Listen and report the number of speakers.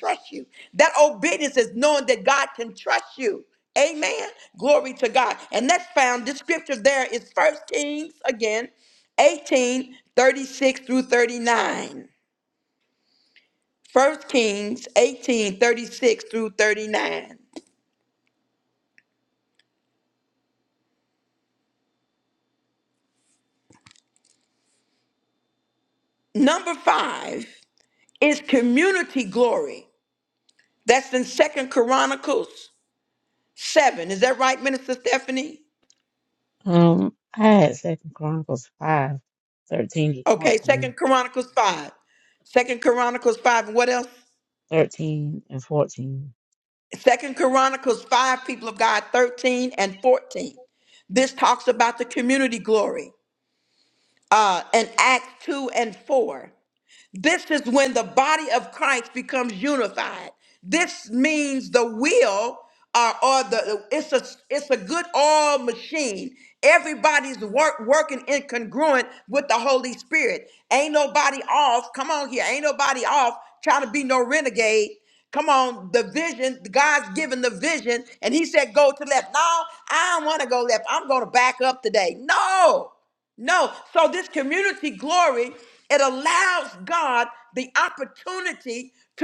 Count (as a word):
two